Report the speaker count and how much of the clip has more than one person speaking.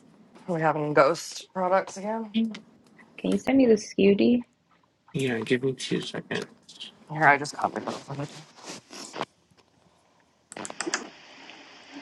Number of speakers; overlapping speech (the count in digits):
3, no overlap